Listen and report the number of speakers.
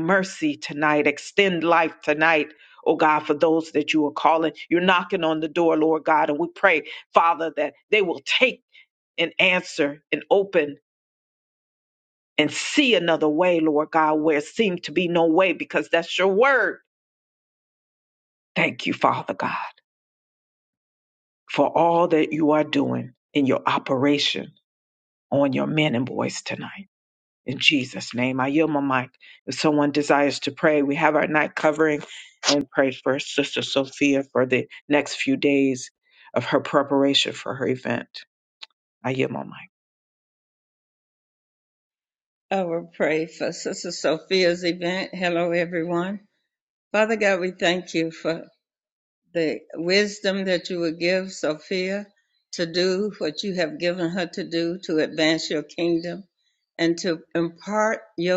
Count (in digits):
2